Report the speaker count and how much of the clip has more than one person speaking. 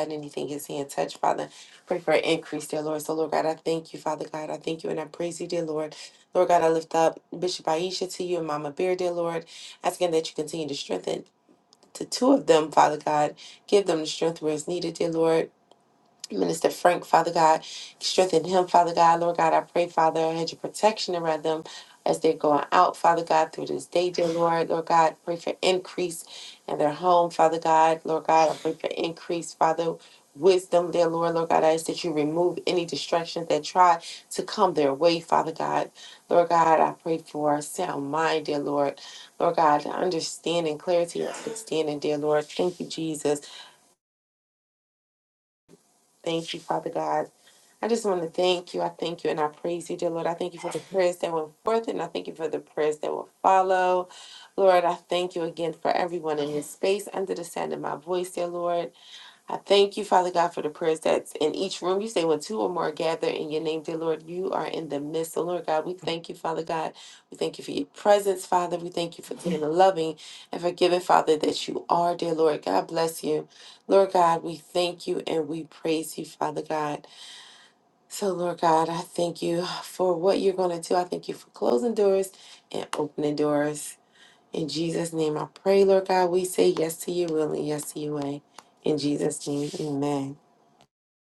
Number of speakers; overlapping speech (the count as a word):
one, no overlap